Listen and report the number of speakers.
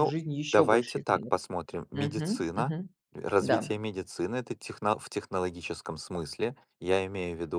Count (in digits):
2